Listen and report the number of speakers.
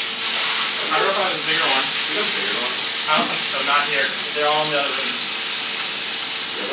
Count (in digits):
2